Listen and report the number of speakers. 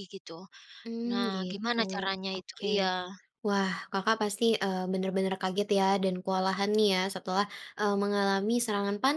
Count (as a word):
two